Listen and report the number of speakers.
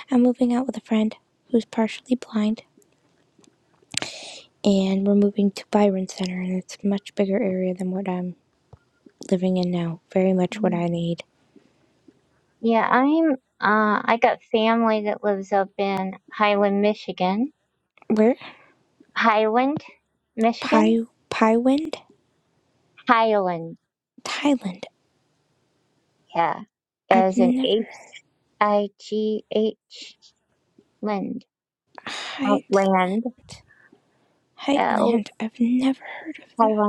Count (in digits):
2